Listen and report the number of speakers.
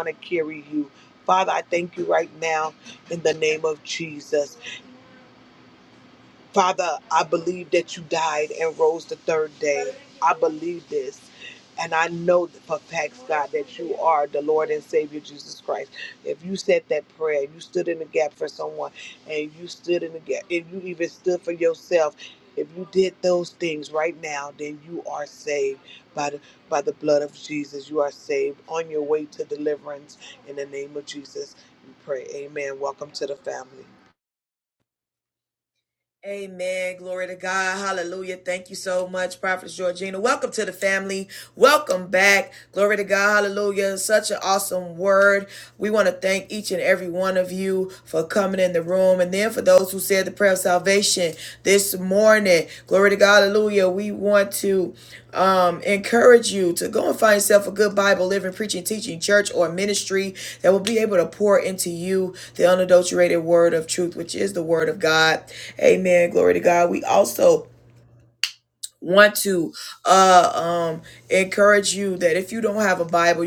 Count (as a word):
two